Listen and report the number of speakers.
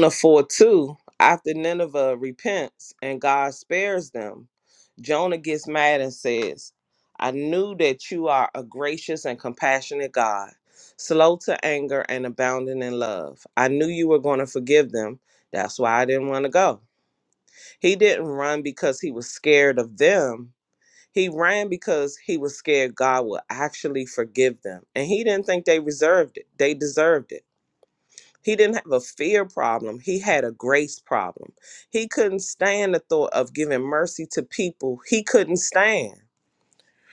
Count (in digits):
1